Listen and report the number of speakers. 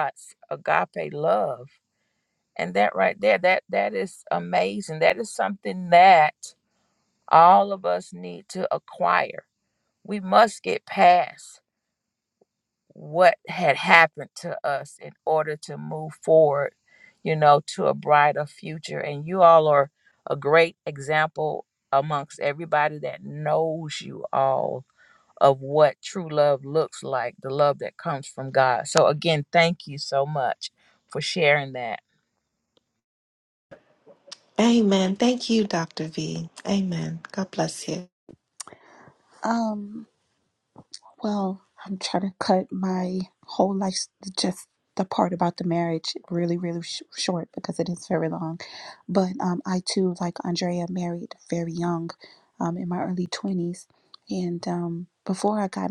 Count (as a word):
three